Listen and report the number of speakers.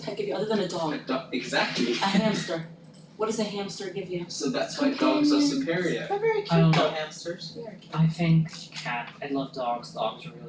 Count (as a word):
four